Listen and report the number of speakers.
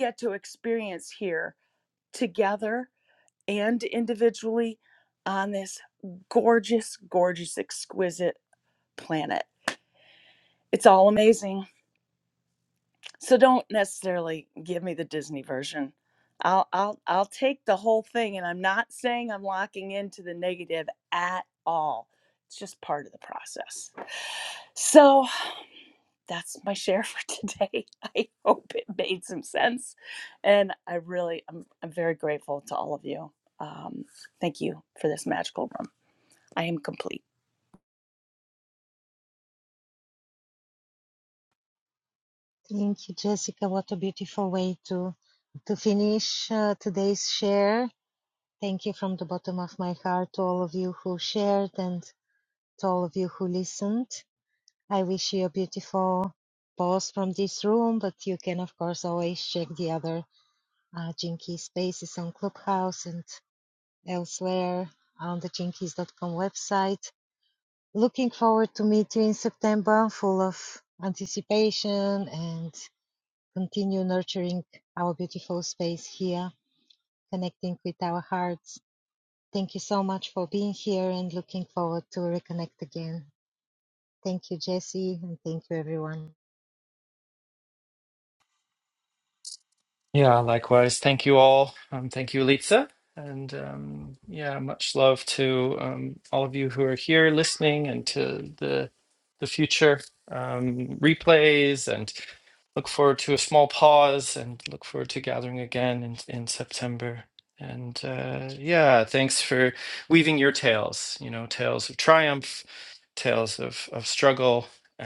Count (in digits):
3